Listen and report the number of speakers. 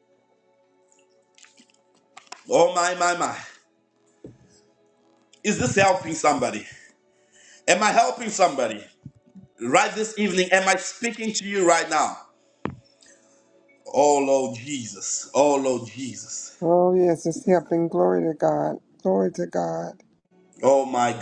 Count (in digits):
2